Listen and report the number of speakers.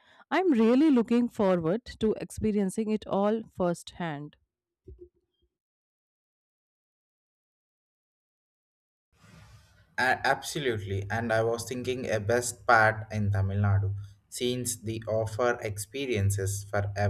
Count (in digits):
2